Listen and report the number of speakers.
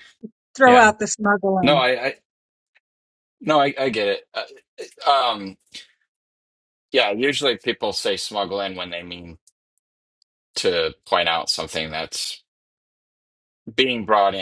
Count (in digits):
2